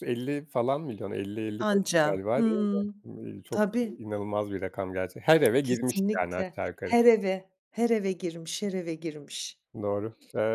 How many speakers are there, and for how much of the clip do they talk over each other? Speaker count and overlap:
two, about 22%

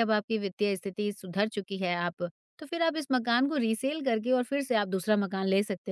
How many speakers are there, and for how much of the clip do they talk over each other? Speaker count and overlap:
one, no overlap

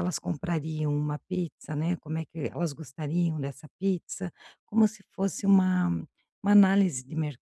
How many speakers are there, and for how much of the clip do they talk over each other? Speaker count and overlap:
one, no overlap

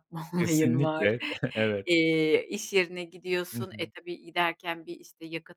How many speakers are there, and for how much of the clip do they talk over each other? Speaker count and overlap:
two, about 18%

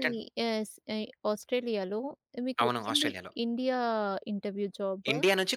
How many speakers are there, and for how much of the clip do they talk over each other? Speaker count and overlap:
two, about 15%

